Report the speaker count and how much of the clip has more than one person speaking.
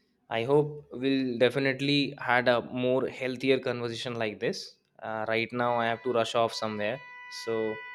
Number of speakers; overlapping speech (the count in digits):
1, no overlap